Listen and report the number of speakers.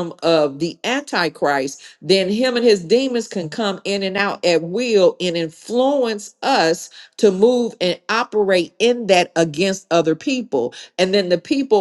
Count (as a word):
one